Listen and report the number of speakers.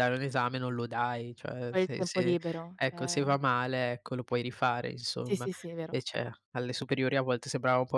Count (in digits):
2